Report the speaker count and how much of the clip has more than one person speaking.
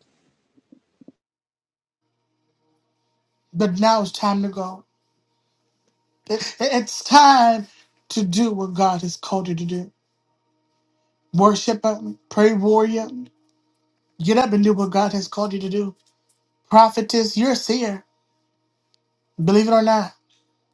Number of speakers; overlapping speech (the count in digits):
1, no overlap